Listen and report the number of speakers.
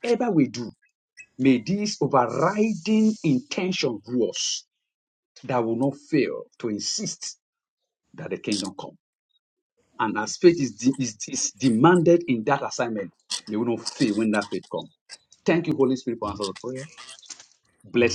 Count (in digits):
1